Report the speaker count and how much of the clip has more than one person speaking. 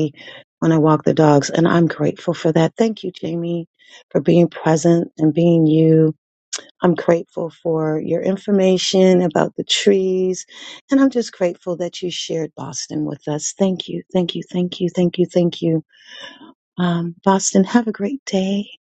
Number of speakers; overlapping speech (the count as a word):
one, no overlap